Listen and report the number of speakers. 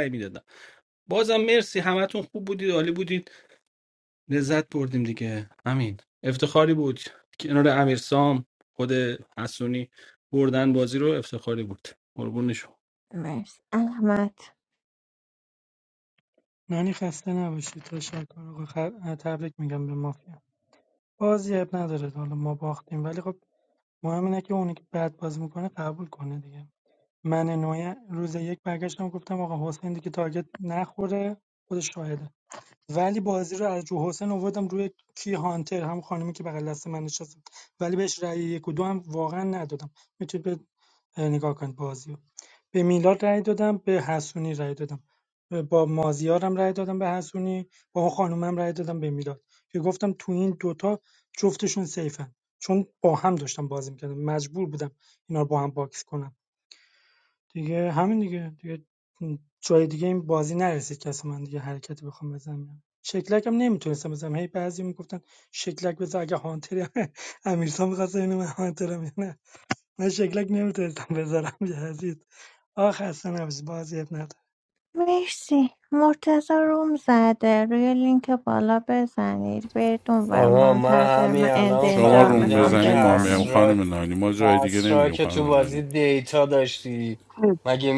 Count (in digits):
5